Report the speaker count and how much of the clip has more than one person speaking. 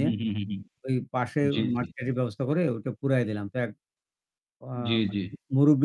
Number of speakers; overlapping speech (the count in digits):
2, about 15%